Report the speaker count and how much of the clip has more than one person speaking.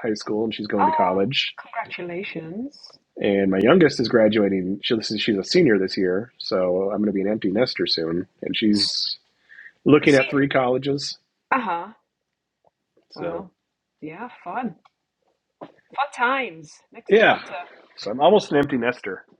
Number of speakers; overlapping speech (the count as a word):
two, about 6%